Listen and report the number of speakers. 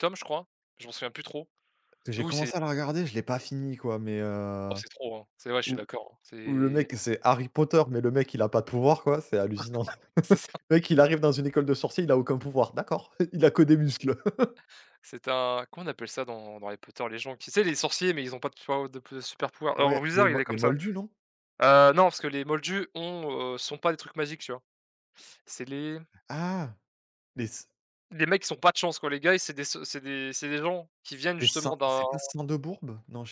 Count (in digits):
2